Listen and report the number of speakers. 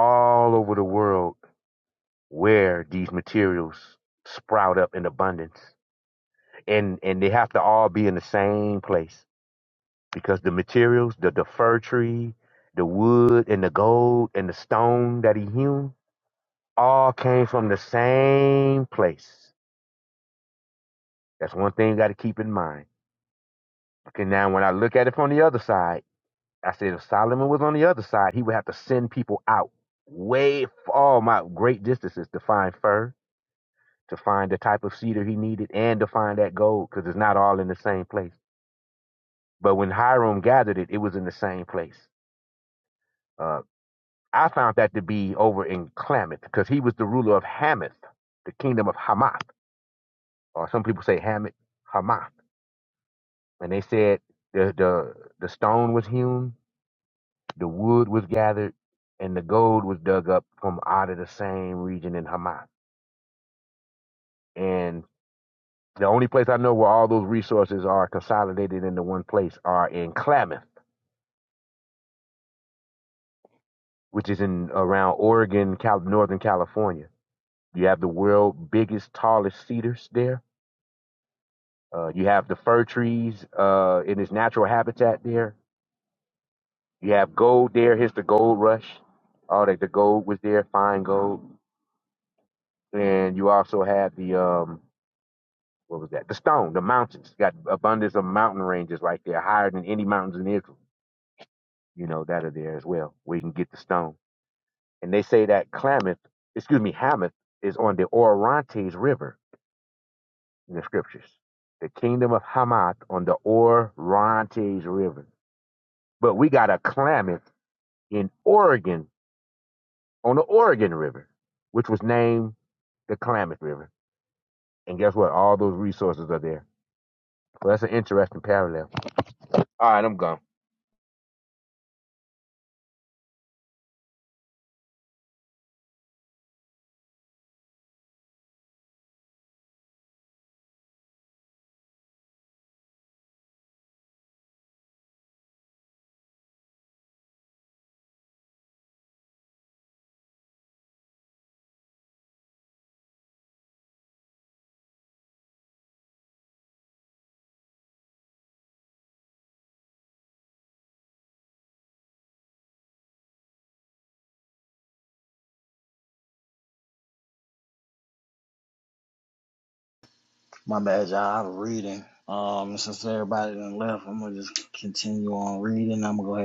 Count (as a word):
two